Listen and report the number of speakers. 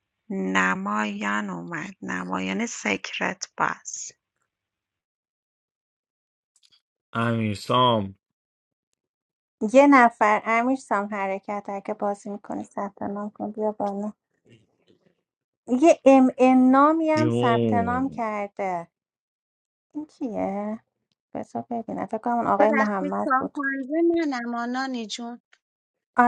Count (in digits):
4